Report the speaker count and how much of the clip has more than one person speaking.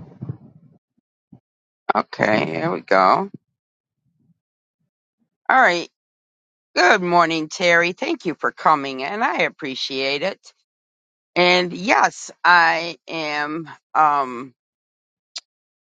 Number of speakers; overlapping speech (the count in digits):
1, no overlap